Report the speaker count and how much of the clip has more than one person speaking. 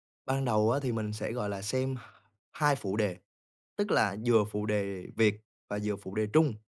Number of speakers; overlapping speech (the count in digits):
1, no overlap